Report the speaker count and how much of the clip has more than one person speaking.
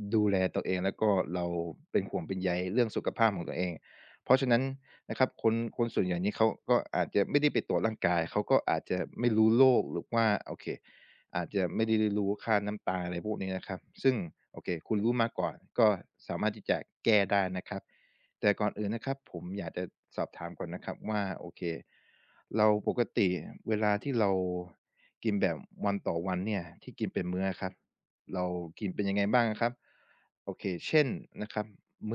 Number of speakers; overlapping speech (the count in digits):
1, no overlap